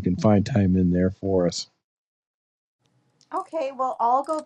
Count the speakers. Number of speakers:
two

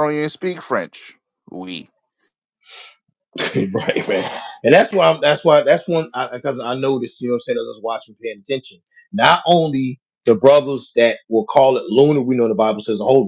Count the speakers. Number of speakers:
two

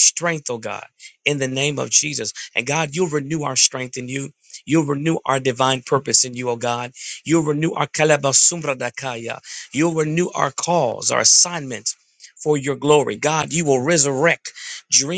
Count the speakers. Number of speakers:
one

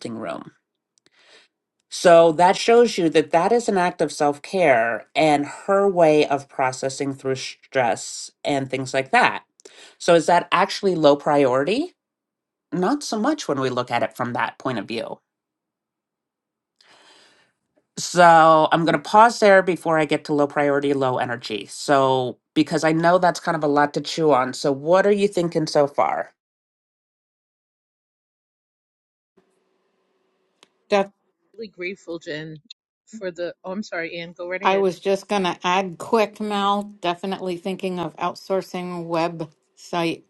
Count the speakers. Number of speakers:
three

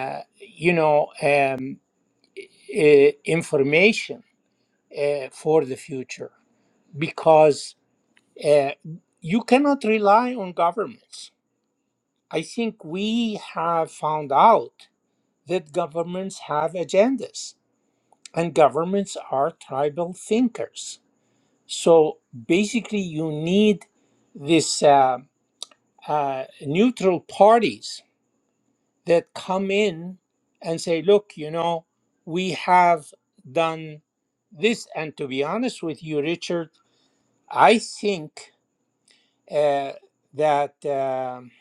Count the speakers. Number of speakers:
one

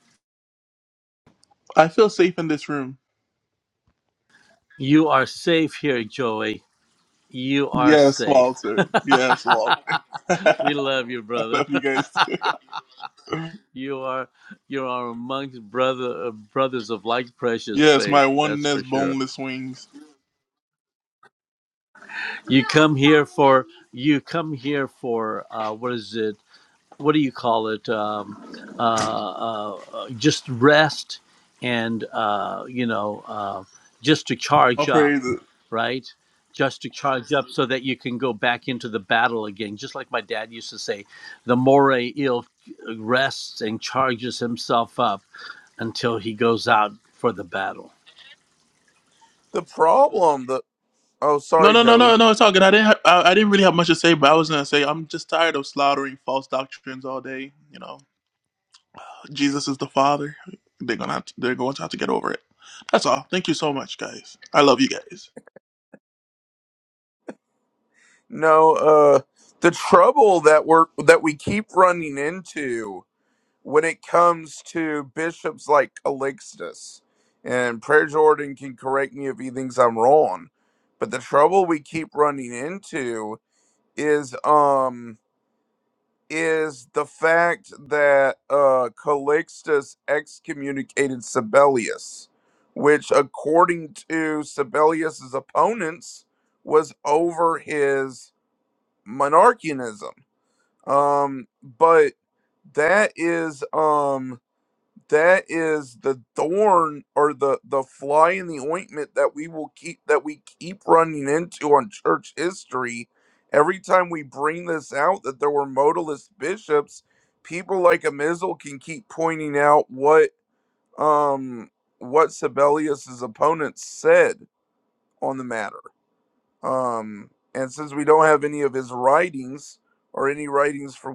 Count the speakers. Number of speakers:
three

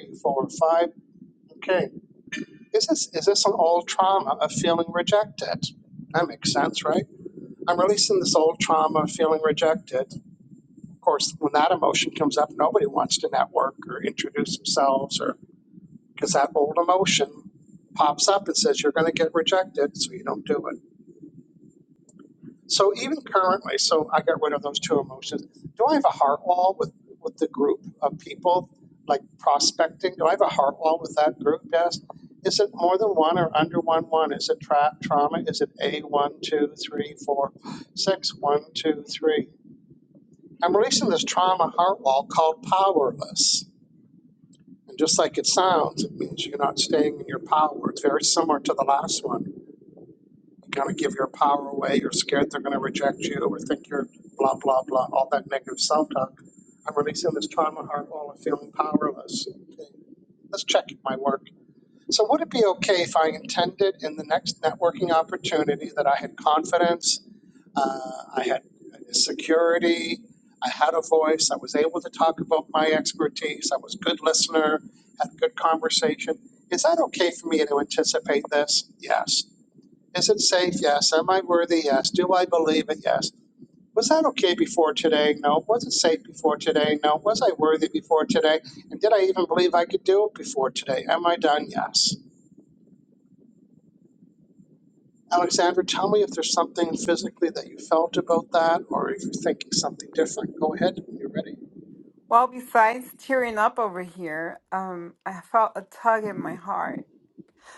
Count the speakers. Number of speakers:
two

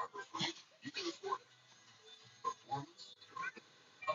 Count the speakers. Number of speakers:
zero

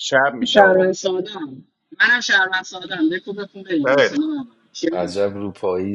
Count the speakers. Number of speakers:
three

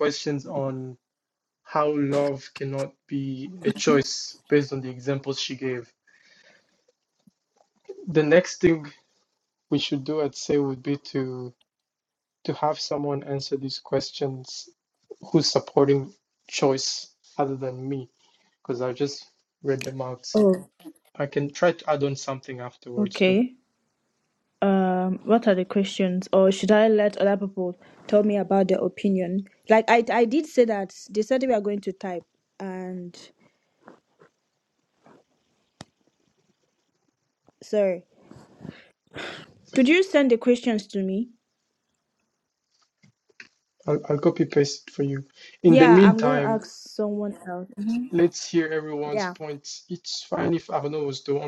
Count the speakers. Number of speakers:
two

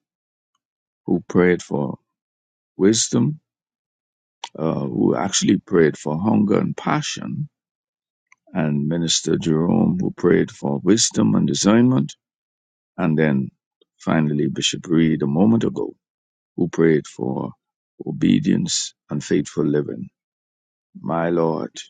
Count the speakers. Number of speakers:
one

